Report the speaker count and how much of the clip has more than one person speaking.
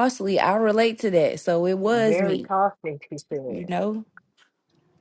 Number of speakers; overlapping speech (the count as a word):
two, about 16%